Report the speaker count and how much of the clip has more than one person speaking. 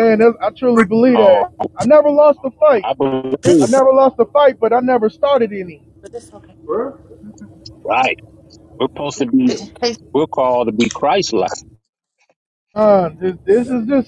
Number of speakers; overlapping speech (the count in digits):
3, about 6%